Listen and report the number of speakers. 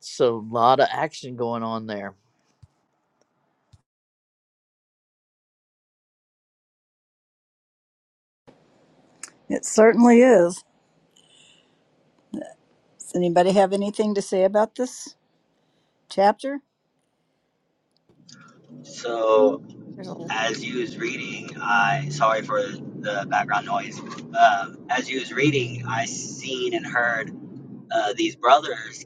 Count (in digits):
3